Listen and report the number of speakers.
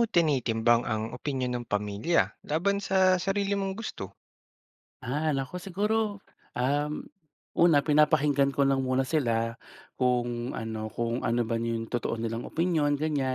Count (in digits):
2